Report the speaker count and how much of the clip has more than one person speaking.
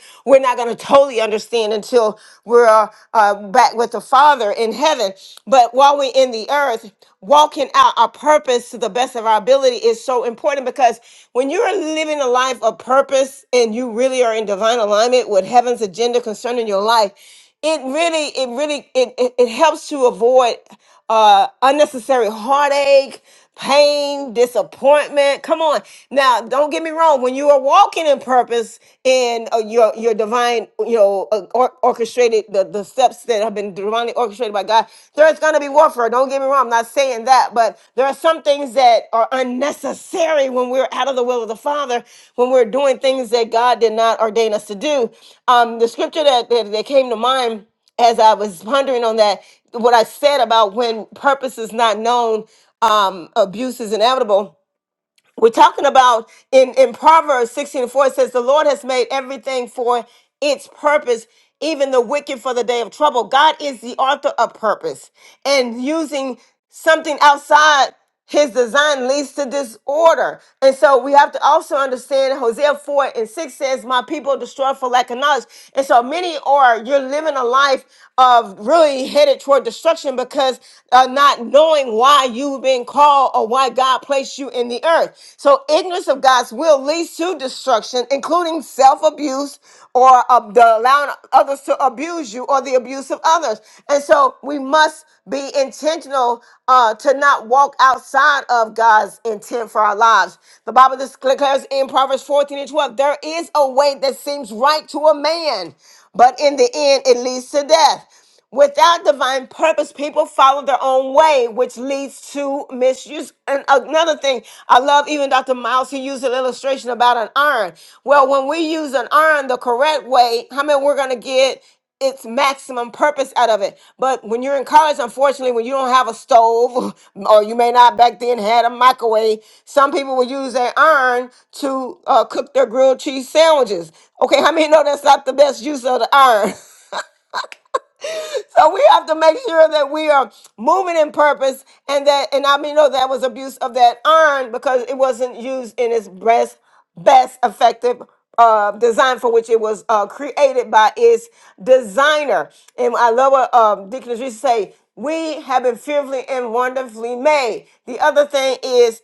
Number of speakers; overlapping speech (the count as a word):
one, no overlap